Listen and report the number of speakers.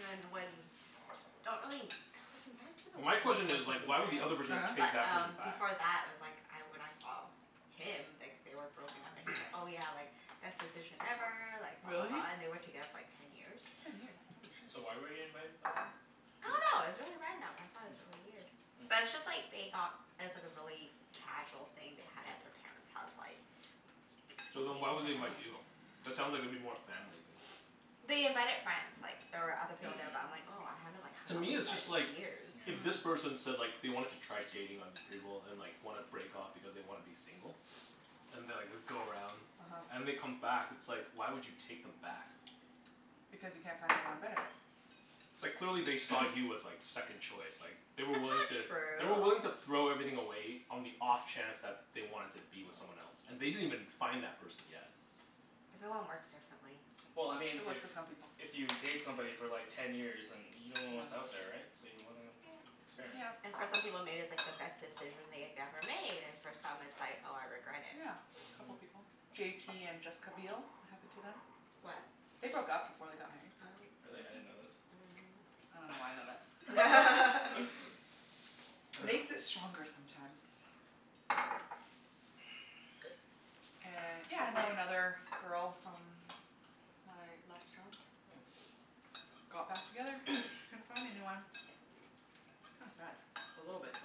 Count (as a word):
four